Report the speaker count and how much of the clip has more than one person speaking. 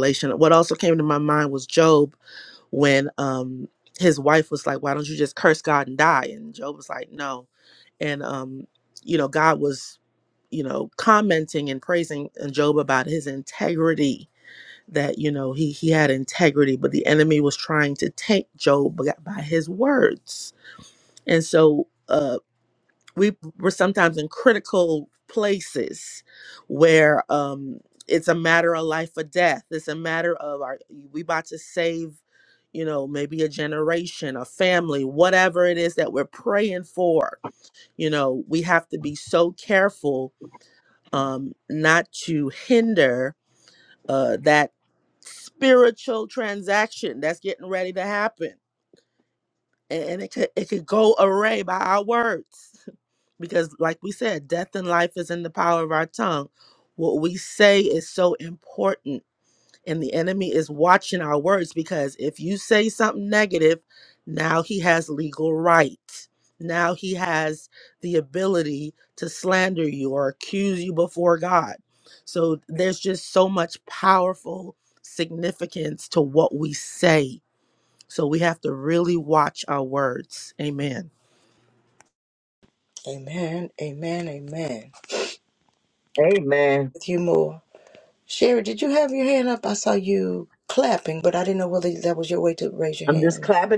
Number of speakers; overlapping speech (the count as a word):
three, under 1%